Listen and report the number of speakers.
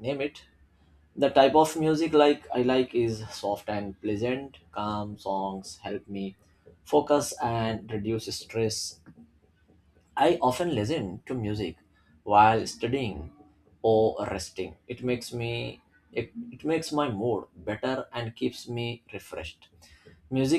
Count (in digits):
1